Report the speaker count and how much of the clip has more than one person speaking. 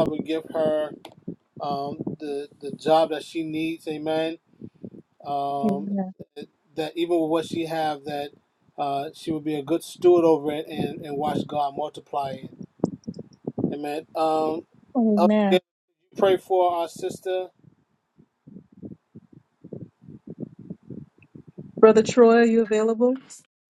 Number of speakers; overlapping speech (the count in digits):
3, about 3%